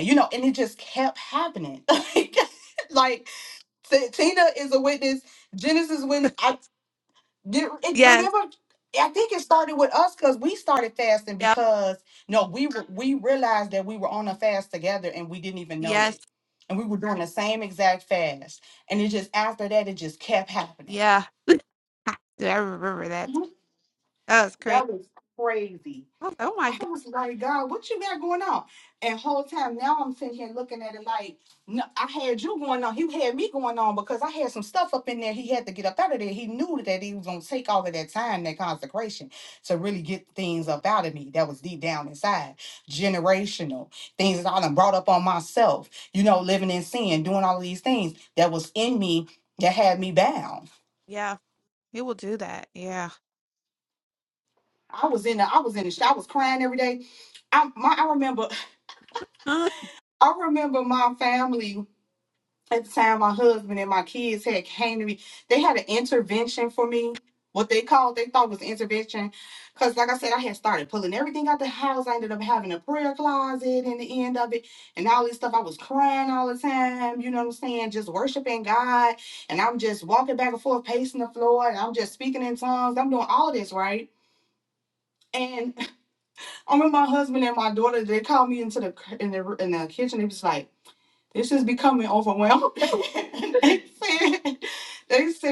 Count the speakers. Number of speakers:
two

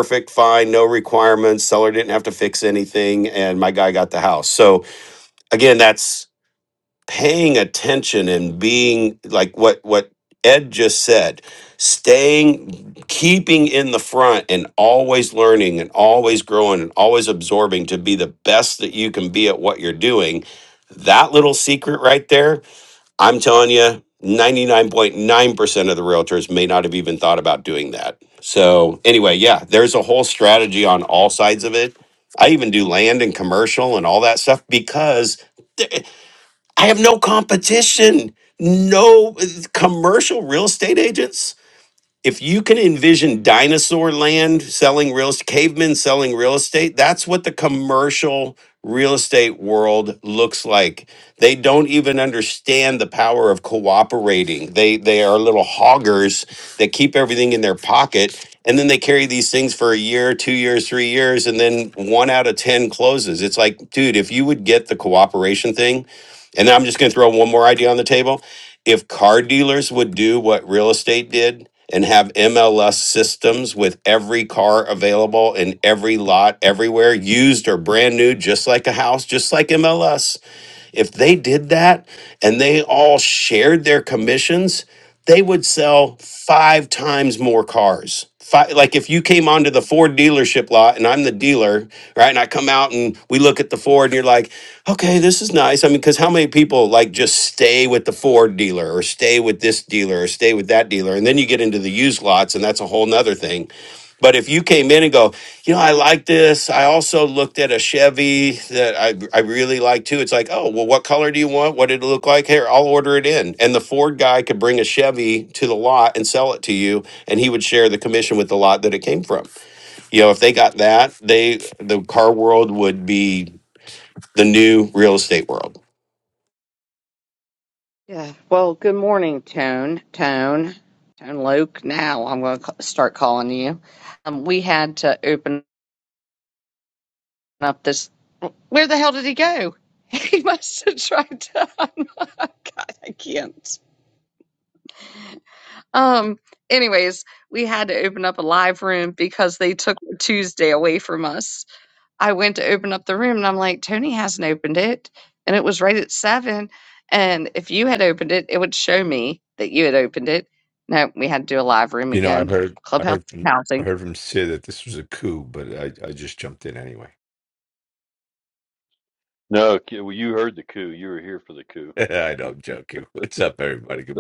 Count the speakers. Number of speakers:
four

